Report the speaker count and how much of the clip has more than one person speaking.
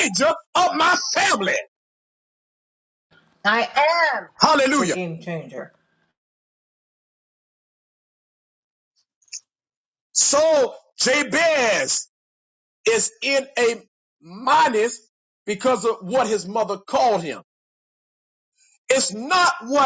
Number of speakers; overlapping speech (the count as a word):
two, about 1%